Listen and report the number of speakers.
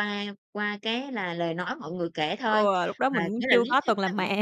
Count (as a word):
two